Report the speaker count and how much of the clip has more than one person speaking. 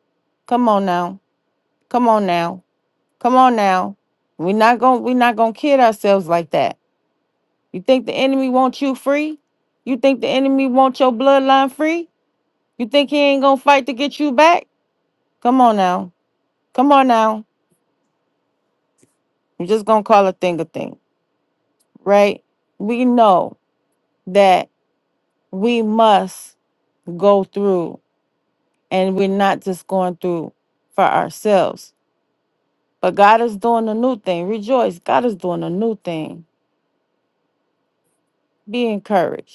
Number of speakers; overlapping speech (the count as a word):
one, no overlap